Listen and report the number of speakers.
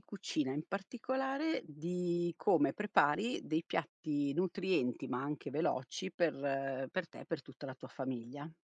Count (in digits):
1